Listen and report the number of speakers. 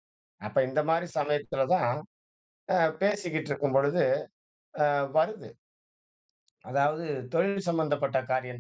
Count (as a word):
one